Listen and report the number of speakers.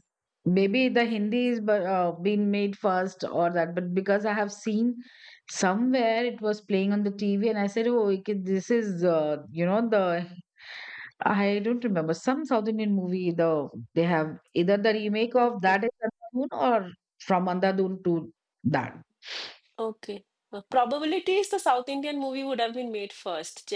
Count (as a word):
two